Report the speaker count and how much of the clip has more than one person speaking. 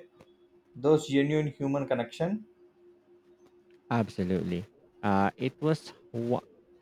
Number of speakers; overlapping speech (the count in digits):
2, no overlap